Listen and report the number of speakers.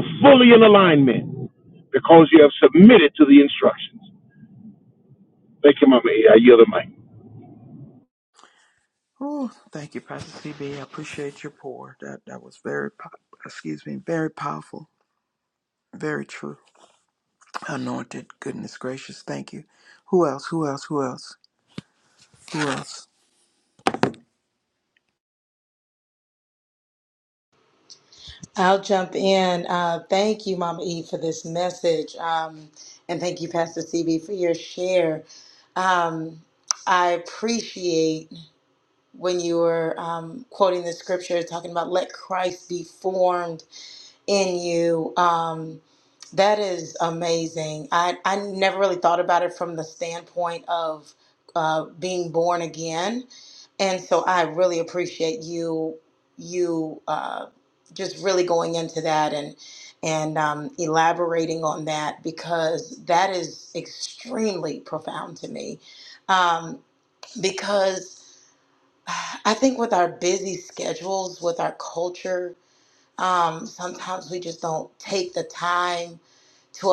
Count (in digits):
3